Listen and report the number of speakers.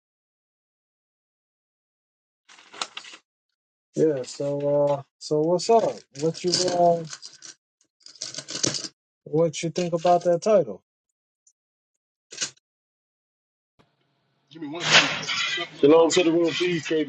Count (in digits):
3